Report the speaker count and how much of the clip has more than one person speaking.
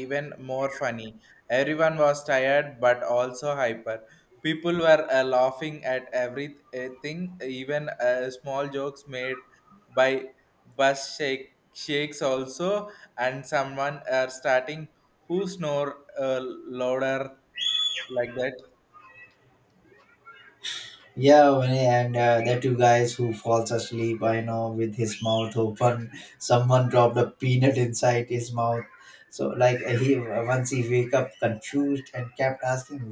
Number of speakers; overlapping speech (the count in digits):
2, no overlap